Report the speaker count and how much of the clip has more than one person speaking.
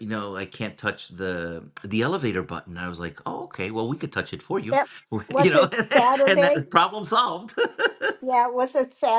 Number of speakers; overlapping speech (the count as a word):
two, about 9%